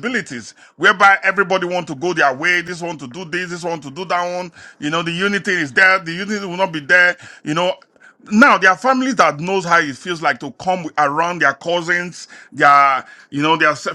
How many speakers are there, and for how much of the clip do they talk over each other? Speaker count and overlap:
1, no overlap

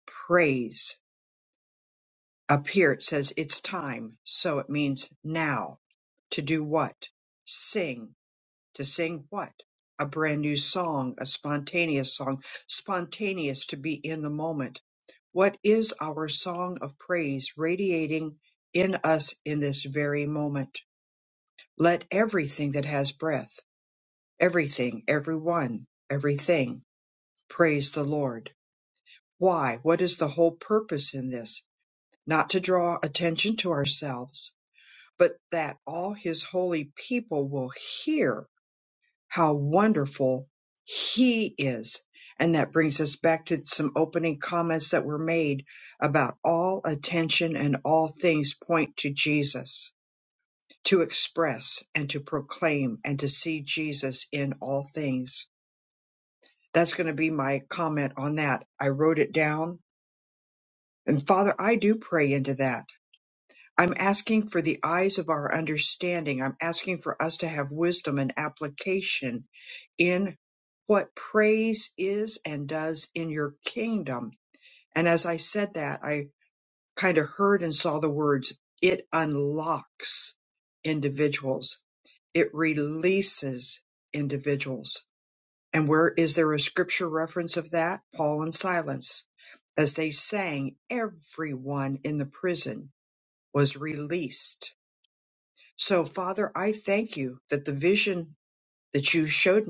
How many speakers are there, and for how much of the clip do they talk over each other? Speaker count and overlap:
1, no overlap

